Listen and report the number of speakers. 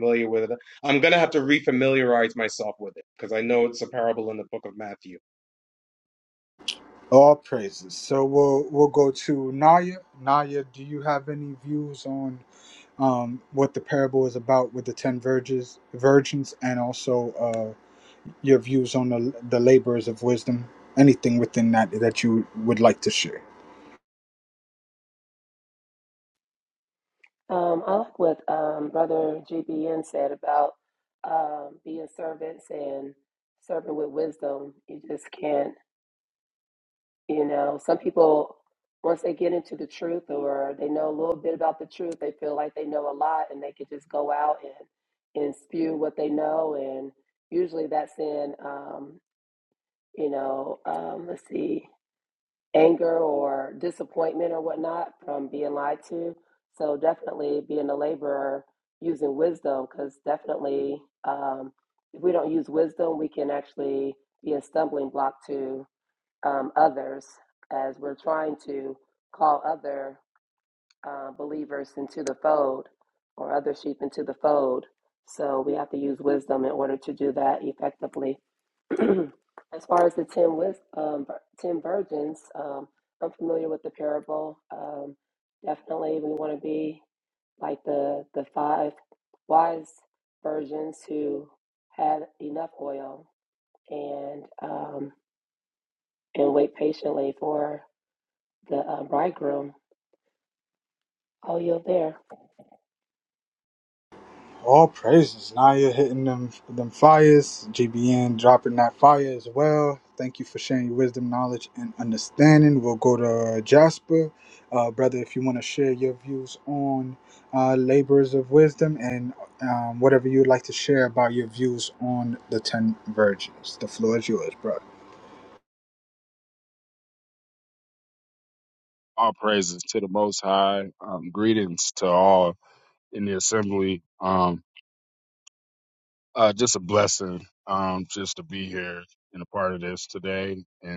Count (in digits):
4